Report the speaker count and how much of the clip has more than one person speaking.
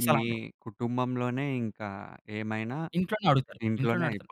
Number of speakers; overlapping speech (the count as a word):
two, about 23%